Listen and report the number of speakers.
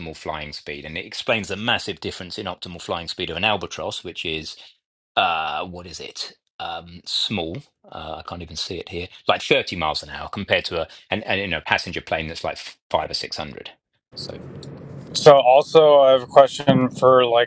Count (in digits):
2